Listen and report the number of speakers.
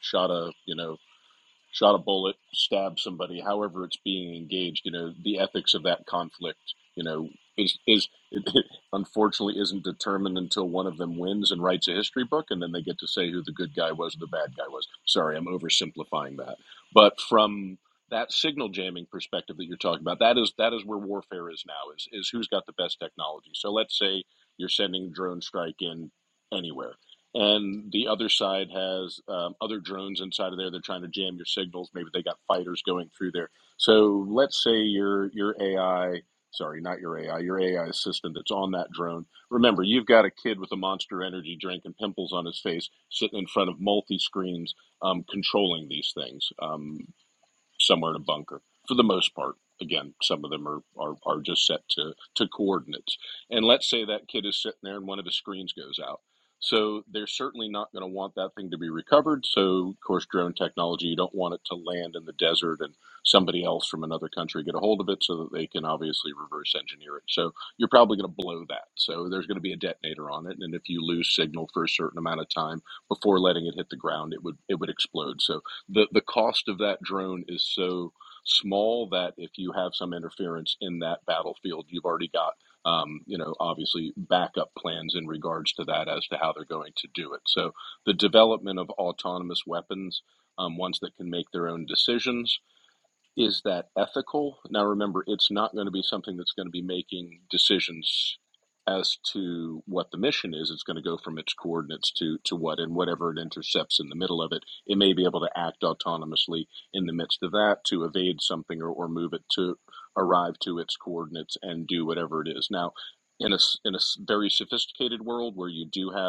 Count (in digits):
1